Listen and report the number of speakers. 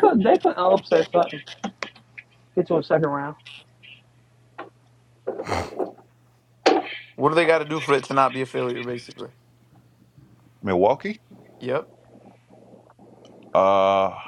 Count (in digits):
3